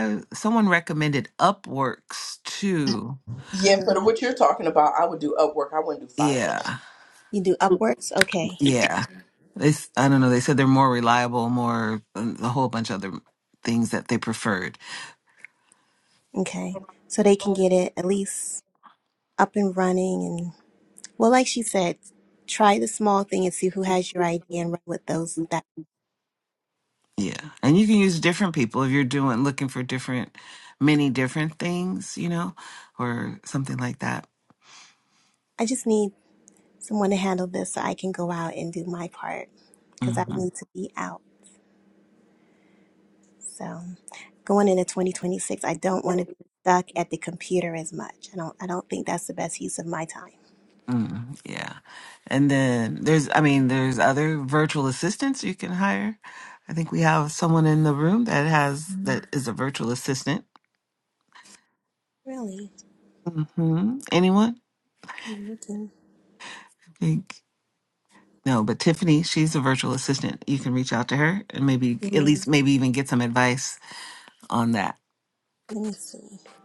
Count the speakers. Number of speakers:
3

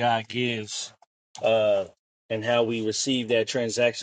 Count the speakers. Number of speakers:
1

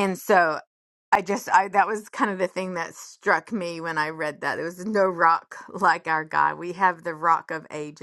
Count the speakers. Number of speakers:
1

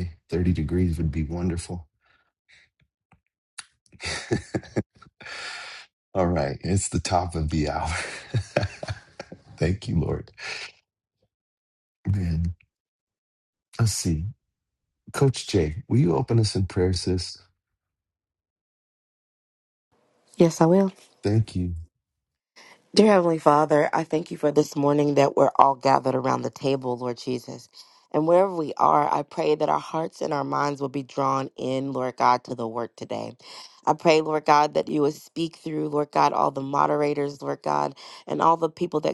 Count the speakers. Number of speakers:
2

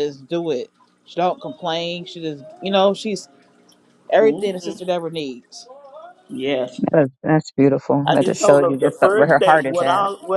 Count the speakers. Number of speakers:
3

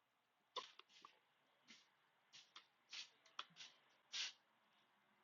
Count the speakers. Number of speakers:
0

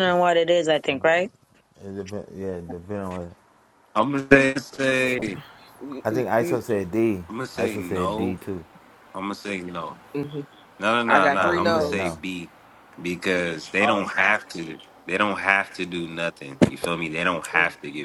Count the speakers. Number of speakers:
4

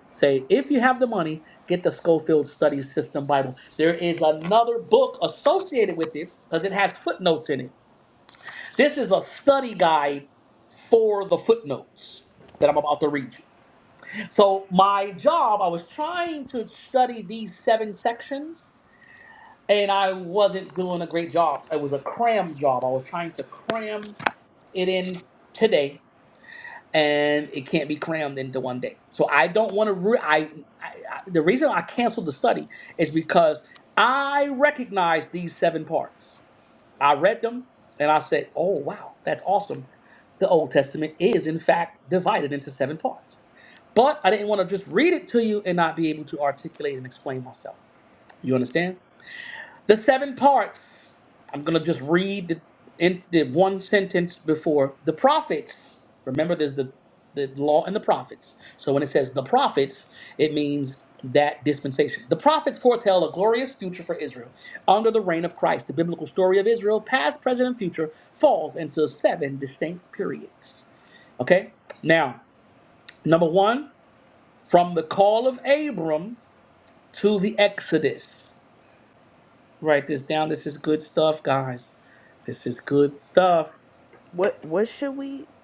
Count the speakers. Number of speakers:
2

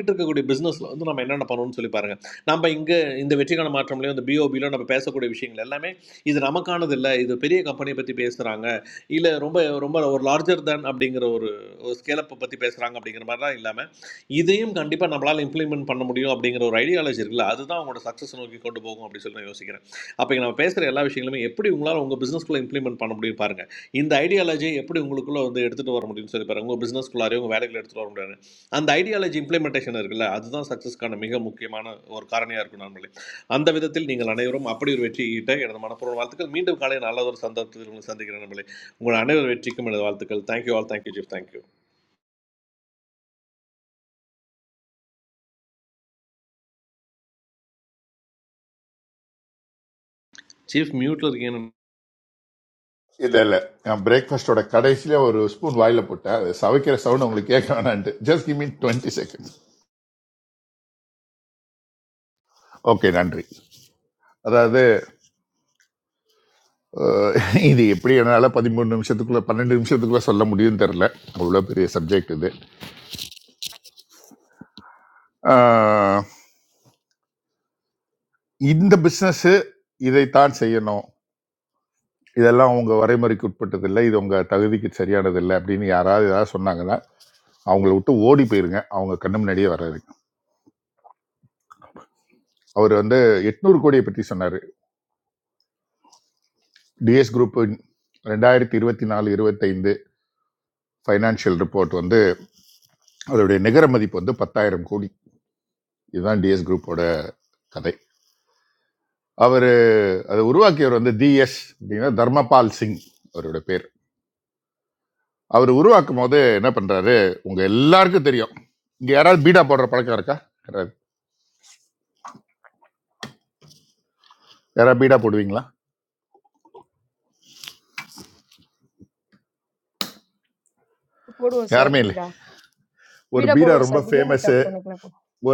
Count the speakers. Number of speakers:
3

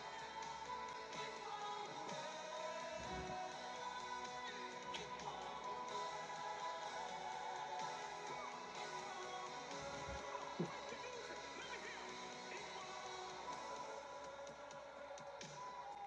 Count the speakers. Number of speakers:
0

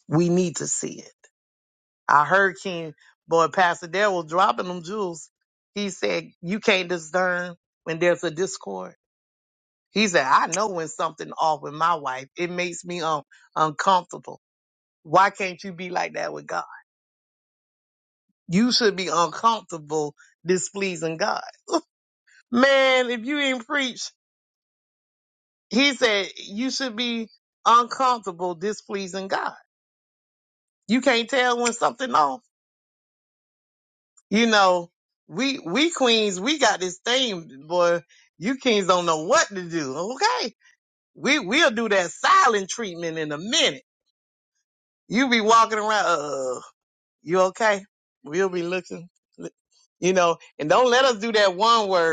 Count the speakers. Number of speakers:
1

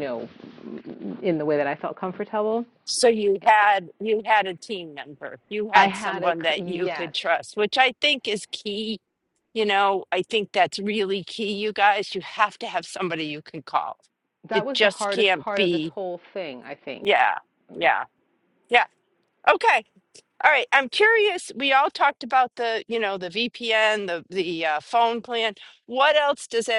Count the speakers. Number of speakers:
2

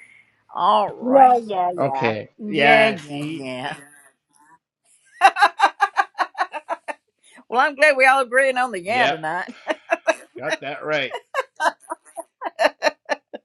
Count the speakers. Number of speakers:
3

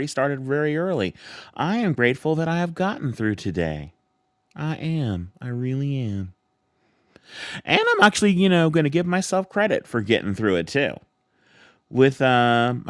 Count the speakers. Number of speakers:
1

